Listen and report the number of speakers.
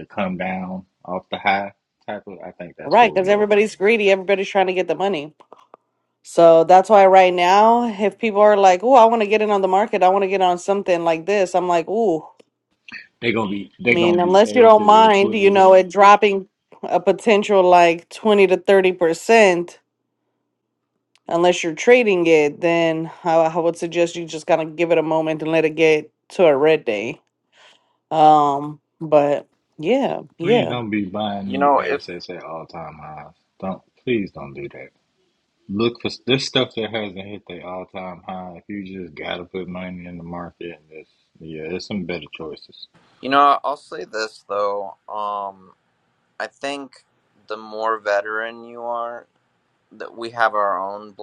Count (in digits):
3